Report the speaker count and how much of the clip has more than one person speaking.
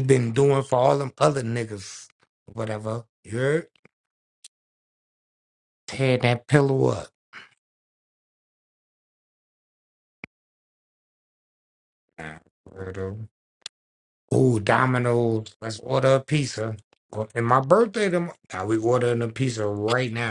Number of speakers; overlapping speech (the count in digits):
1, no overlap